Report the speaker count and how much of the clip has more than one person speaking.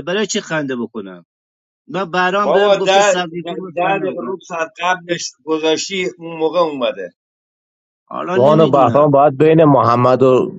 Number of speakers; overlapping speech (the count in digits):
3, about 19%